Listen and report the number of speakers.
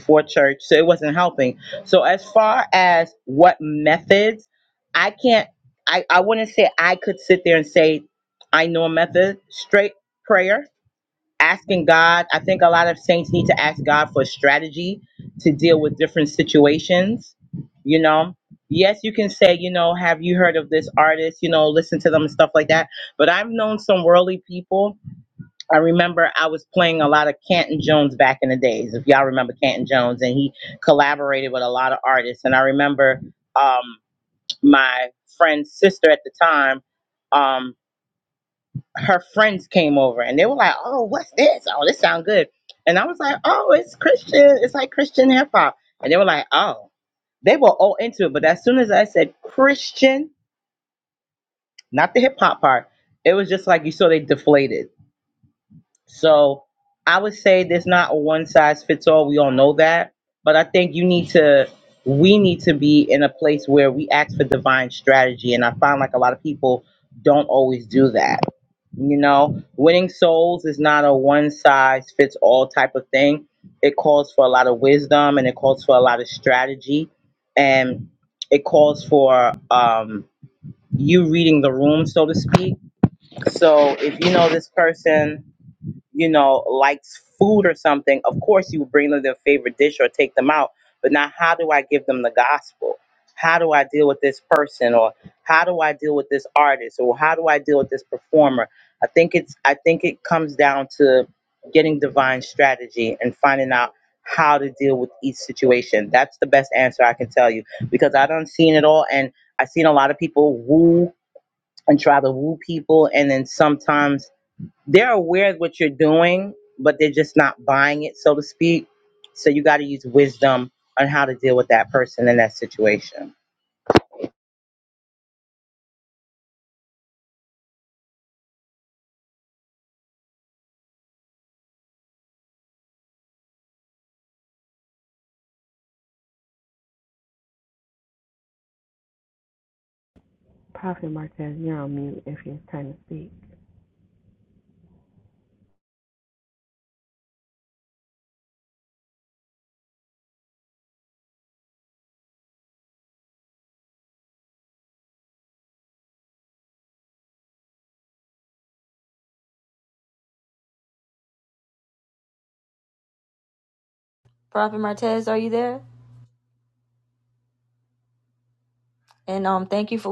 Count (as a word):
three